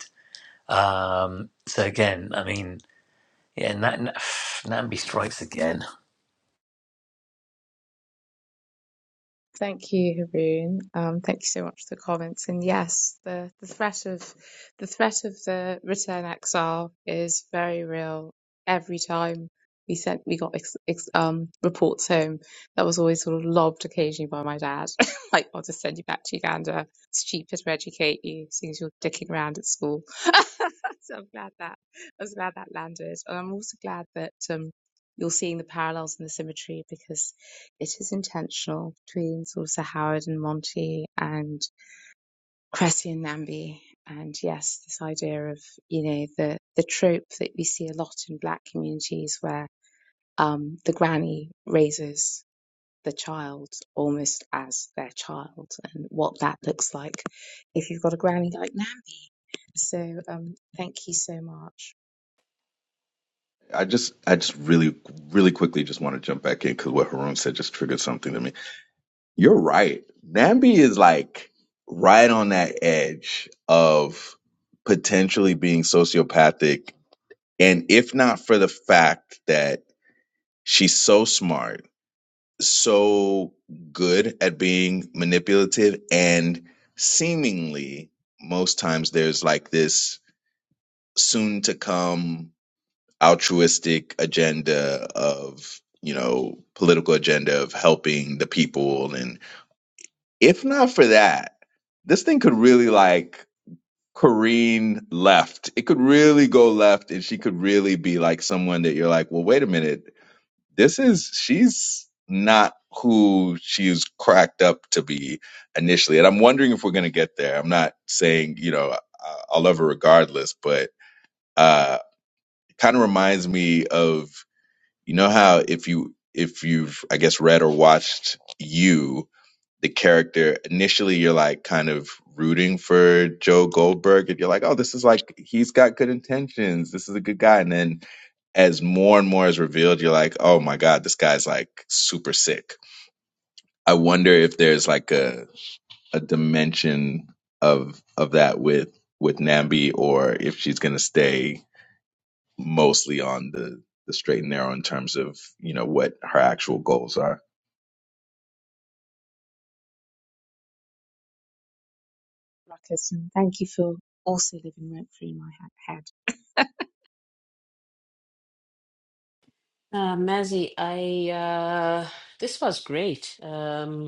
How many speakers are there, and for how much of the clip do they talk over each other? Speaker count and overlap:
four, no overlap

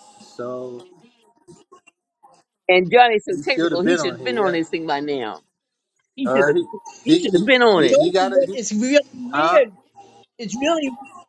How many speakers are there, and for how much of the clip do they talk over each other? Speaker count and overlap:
three, about 28%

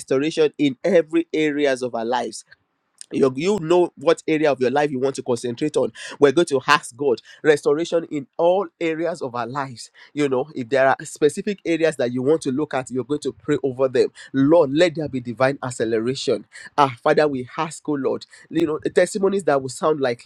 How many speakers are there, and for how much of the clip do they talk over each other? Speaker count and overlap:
one, no overlap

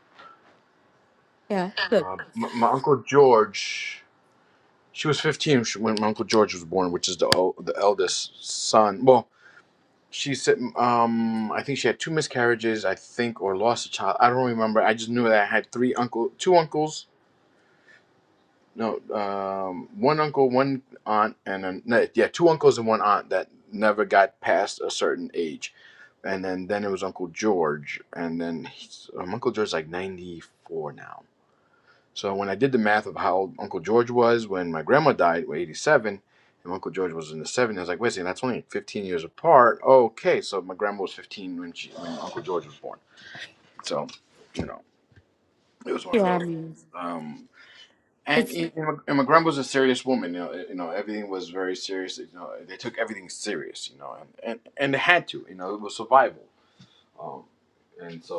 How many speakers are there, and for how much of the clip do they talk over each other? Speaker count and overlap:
two, about 1%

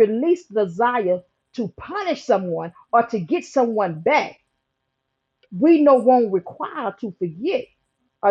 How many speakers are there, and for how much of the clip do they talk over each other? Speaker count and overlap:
one, no overlap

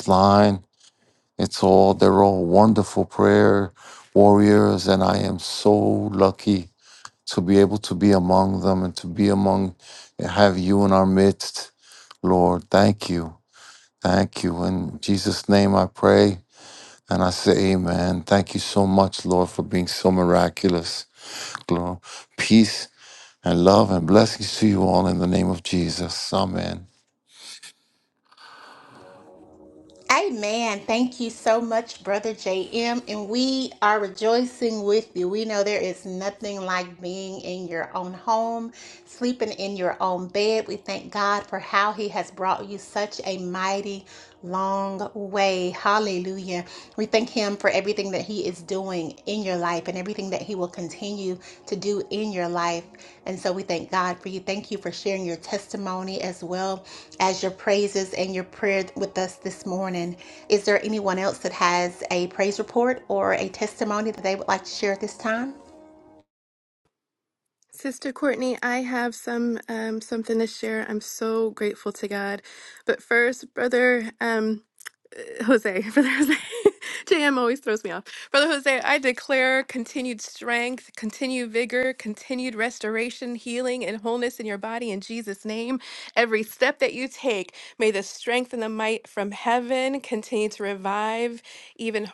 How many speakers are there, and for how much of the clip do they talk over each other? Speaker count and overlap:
three, no overlap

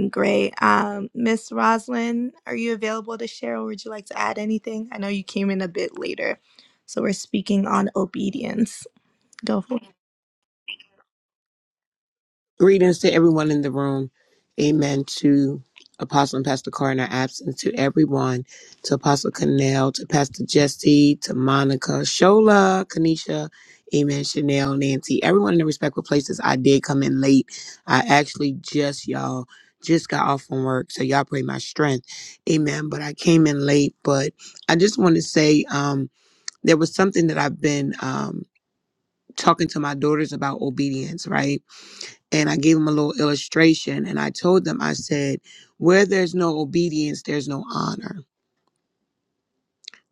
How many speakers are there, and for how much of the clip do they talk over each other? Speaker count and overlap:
two, no overlap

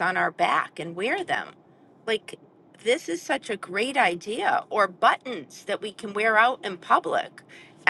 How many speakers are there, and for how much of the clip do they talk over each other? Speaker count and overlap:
one, no overlap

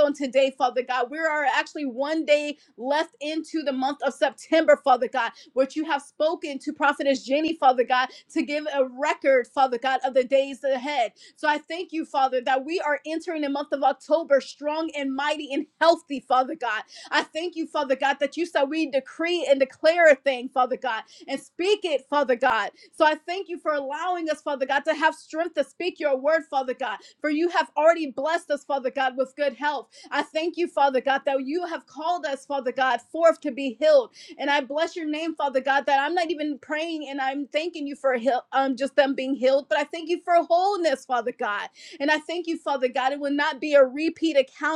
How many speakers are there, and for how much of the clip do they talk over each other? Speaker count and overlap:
one, no overlap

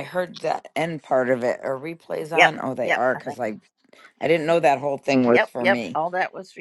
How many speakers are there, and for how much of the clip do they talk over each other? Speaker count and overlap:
two, about 25%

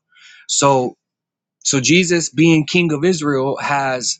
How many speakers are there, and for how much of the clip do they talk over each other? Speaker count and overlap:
one, no overlap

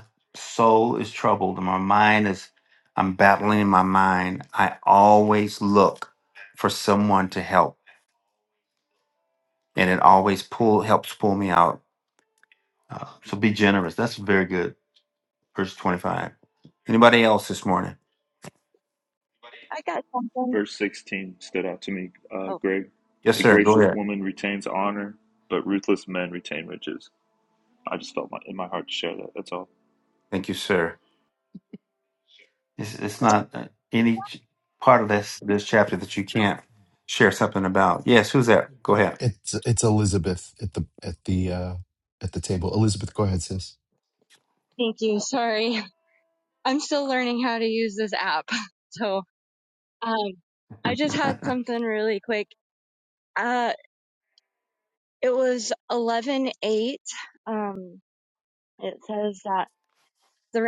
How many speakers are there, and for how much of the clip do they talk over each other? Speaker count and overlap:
four, about 1%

